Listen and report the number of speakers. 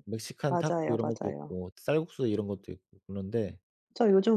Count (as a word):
two